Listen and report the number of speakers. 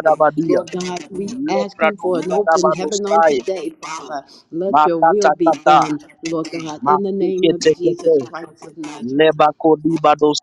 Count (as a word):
two